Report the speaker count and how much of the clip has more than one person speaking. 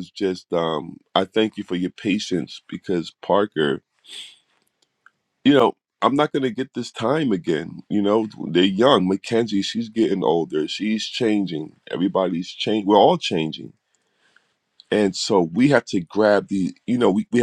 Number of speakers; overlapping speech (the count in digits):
1, no overlap